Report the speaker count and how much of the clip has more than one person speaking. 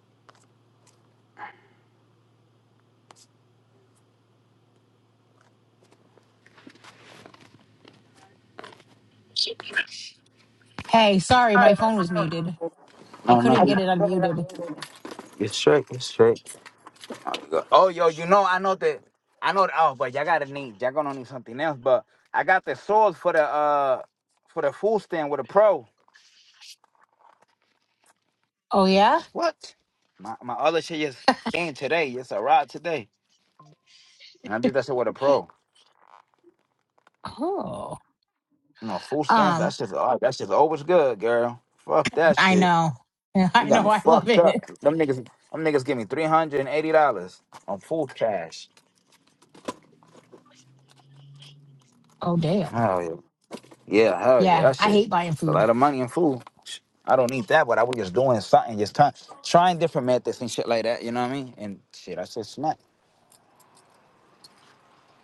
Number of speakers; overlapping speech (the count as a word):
two, about 4%